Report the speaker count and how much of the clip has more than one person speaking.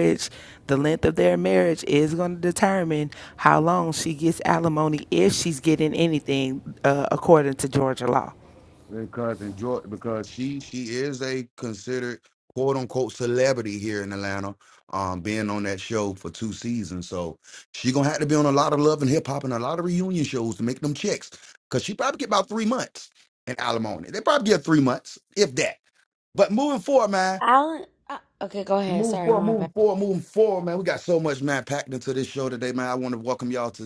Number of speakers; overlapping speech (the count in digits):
3, about 2%